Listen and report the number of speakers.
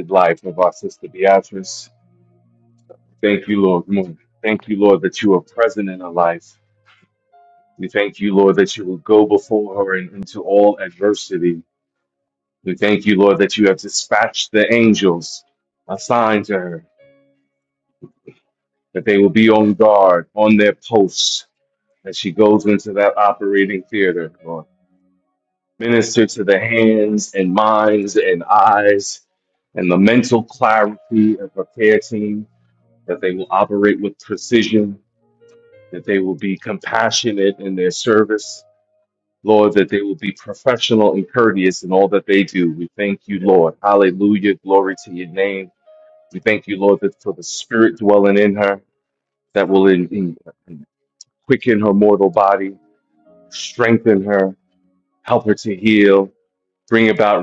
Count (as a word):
one